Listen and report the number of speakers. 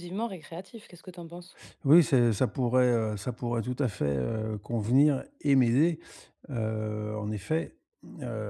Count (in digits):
2